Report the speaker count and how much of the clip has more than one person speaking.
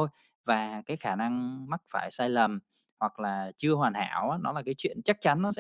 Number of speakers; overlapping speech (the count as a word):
one, no overlap